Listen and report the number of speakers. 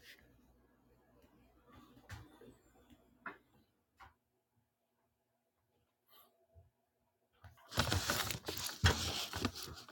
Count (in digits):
0